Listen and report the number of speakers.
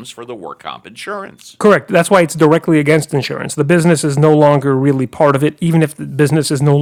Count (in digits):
2